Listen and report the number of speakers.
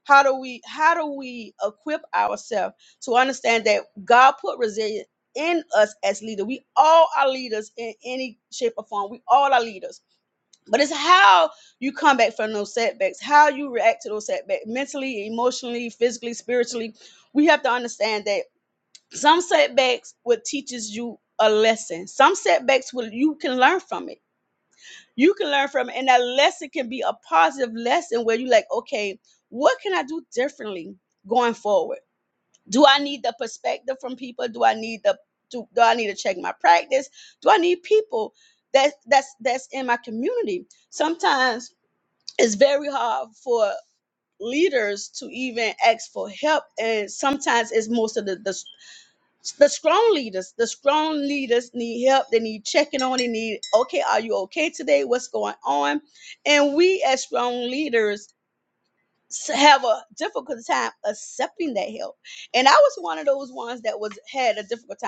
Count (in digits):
1